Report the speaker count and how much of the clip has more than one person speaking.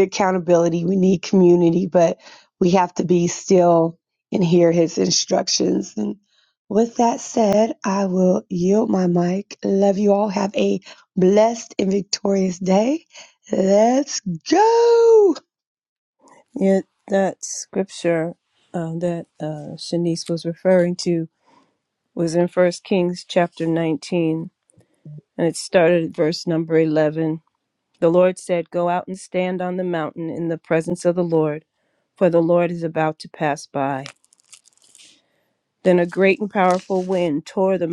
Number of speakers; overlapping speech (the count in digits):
2, no overlap